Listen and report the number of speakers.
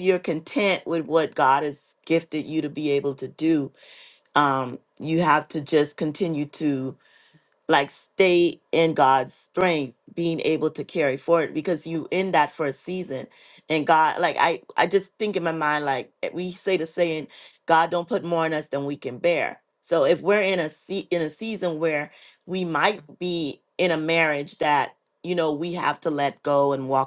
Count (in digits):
1